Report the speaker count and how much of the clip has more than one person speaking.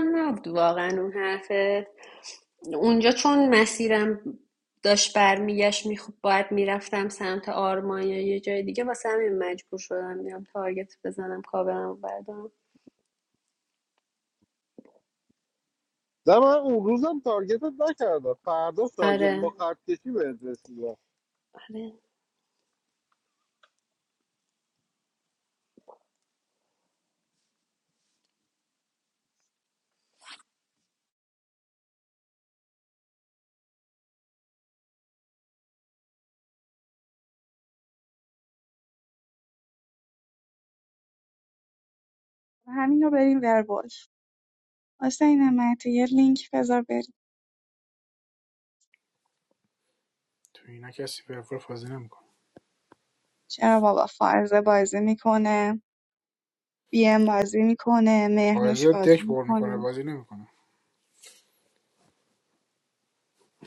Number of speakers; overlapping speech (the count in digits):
4, about 3%